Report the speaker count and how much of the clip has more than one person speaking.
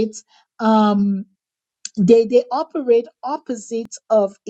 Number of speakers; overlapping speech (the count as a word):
one, no overlap